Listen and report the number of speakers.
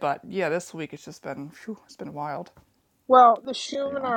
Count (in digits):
2